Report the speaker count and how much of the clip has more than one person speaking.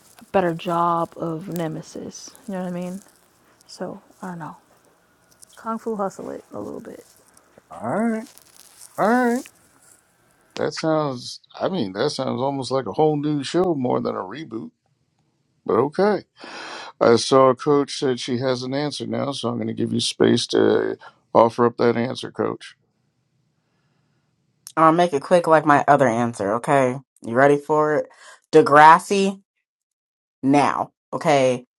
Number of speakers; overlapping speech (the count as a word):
three, no overlap